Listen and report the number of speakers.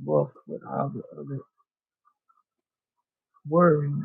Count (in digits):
1